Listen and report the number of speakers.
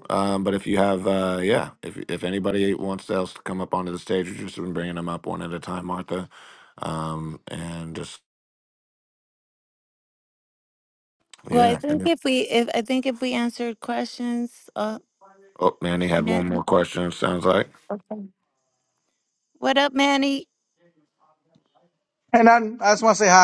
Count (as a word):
three